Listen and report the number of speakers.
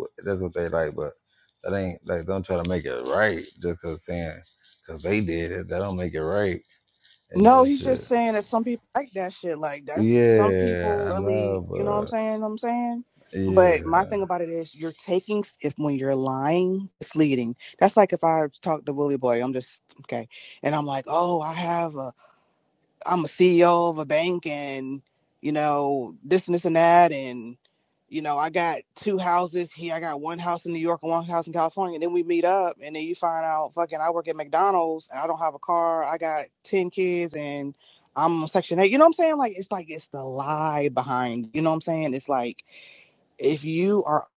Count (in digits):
2